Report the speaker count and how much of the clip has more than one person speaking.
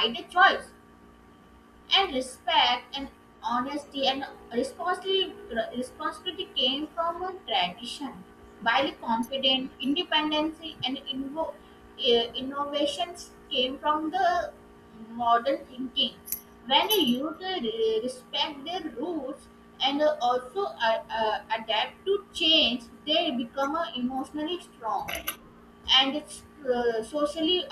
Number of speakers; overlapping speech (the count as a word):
one, no overlap